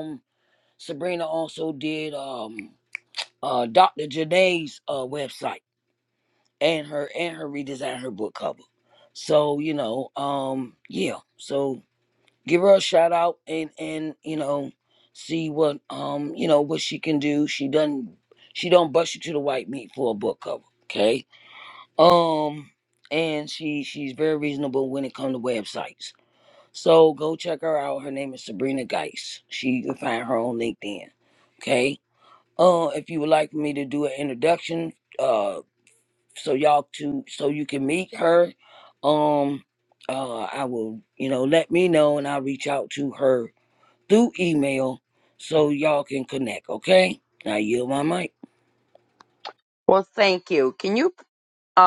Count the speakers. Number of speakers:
two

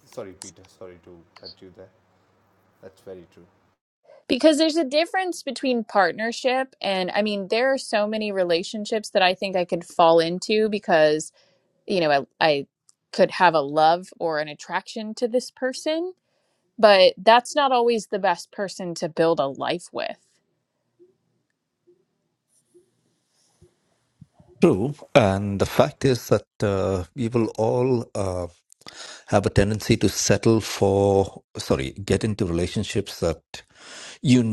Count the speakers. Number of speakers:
three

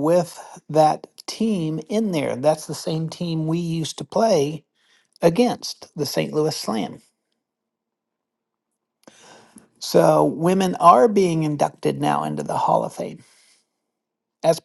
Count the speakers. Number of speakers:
one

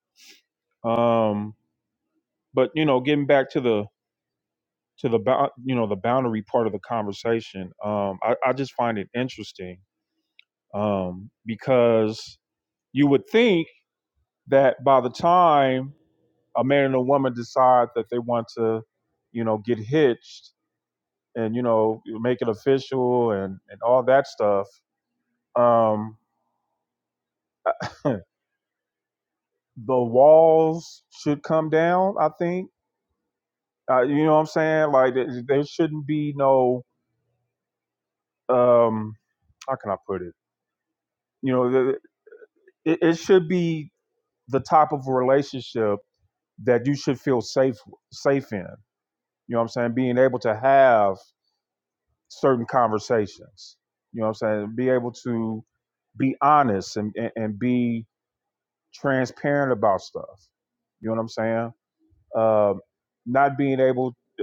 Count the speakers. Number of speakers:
one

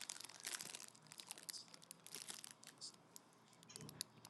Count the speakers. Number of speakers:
zero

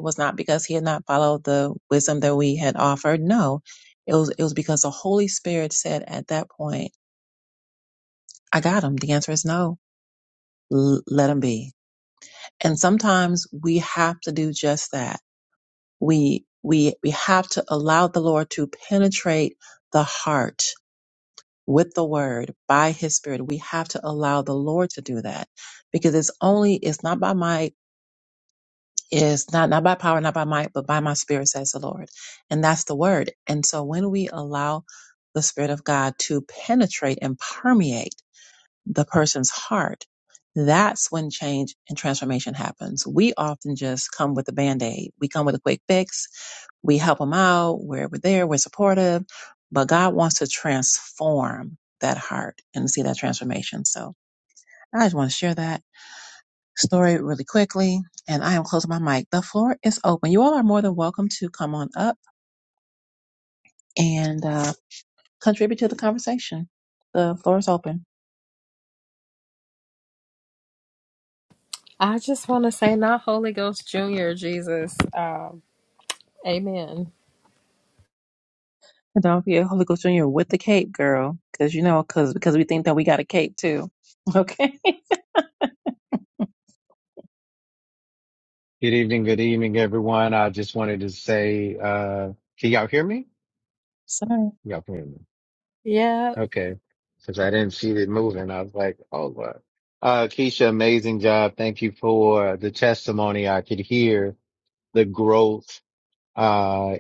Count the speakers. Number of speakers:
three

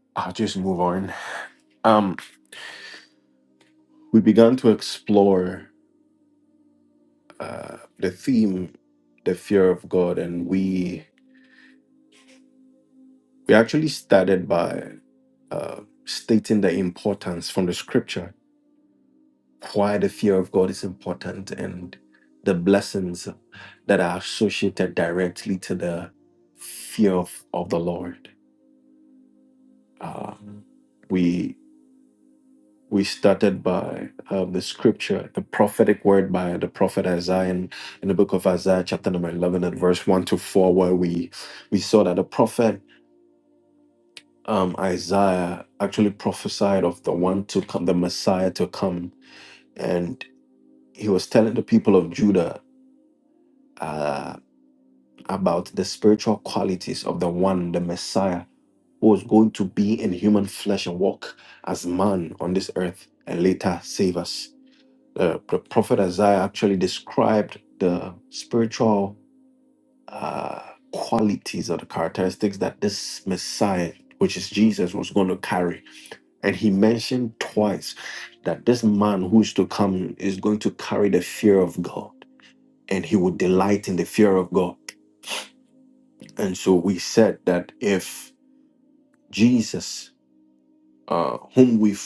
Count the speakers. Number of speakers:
one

